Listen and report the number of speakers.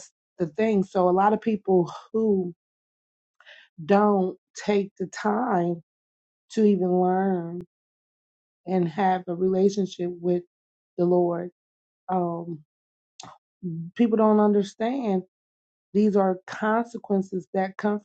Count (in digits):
1